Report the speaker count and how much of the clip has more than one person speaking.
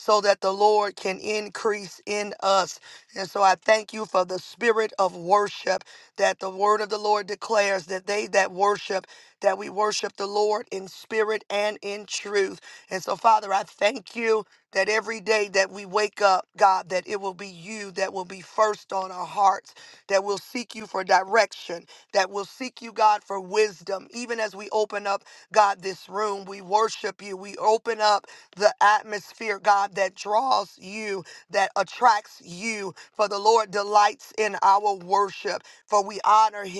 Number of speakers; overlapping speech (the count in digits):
1, no overlap